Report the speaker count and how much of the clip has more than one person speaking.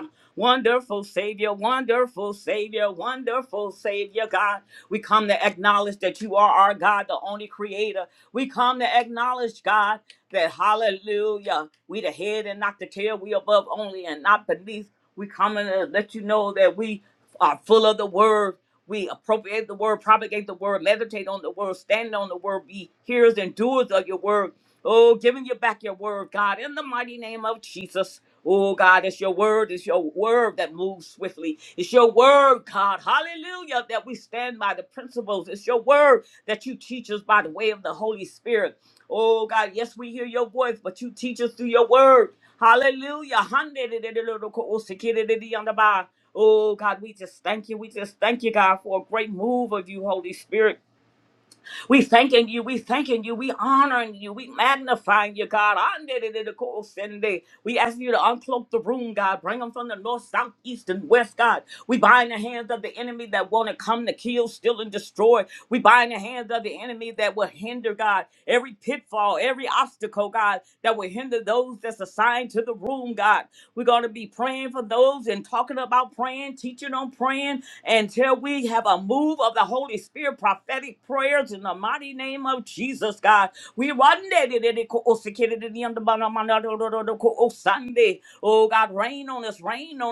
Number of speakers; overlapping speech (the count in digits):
1, no overlap